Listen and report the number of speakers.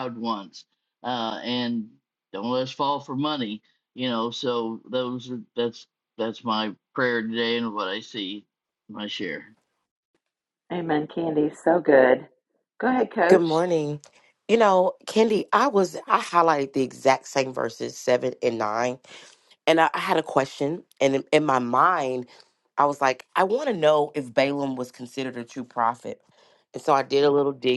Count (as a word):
three